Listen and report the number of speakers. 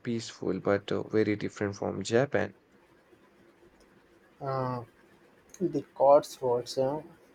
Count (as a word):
two